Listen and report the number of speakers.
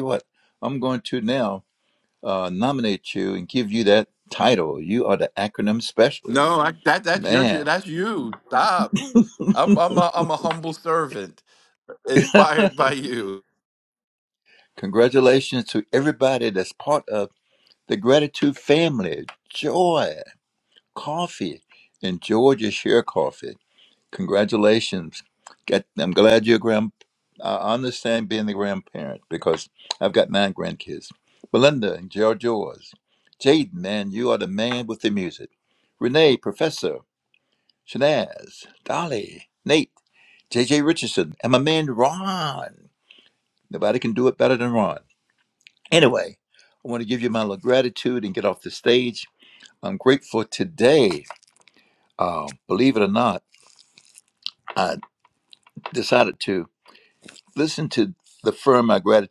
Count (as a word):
two